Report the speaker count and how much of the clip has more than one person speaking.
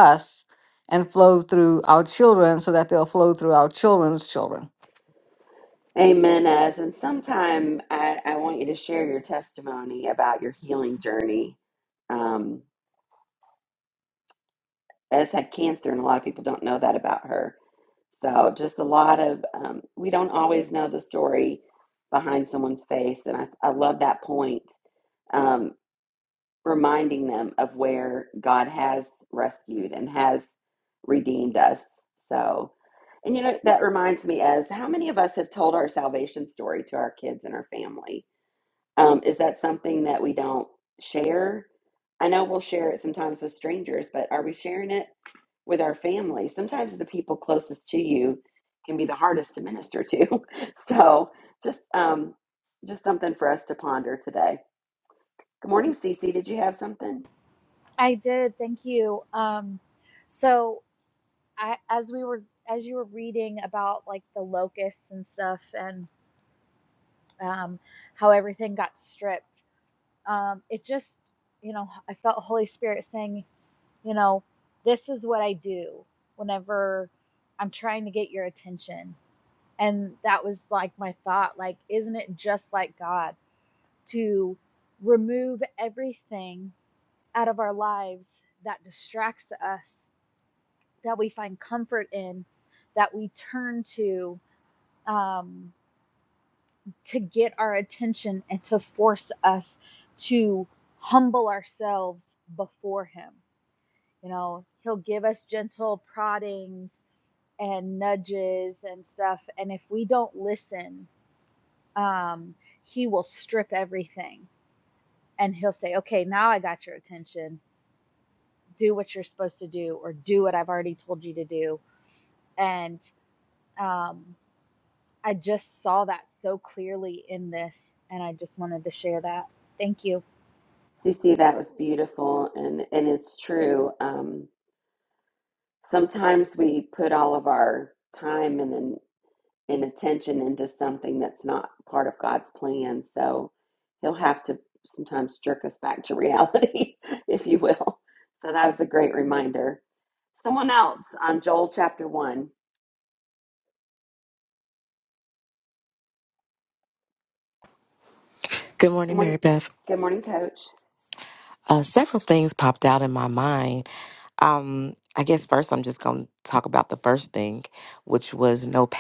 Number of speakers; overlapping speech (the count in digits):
4, under 1%